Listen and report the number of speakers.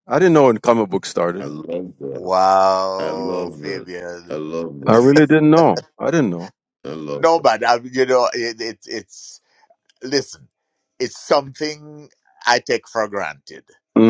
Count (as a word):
three